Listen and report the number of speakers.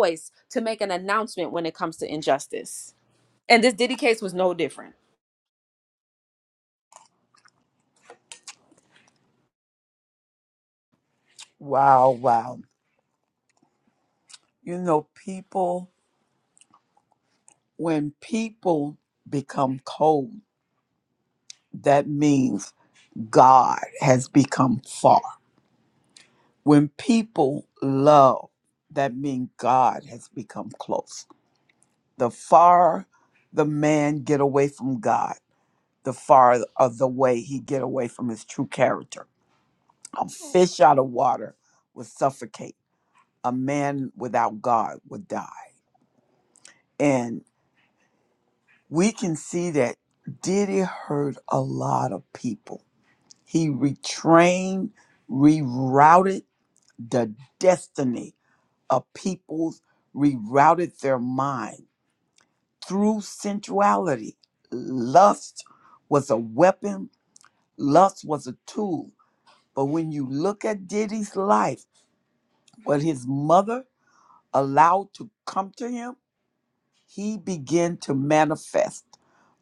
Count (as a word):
two